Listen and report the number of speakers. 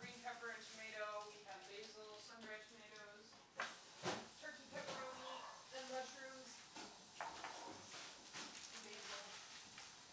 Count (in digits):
1